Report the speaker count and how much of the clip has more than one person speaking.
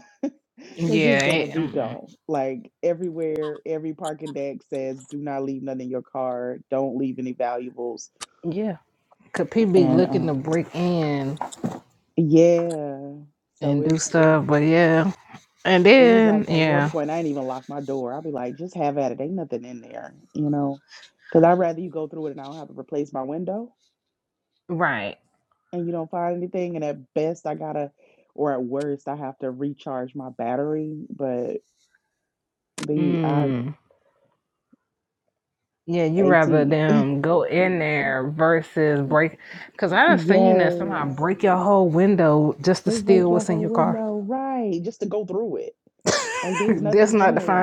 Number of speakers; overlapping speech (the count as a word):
two, about 16%